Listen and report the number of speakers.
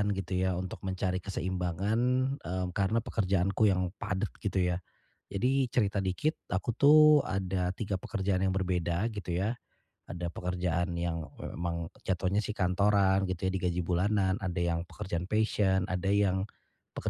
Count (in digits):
1